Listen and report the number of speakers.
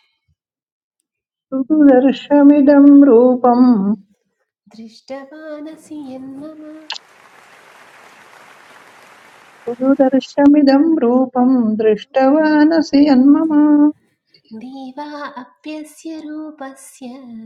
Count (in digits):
2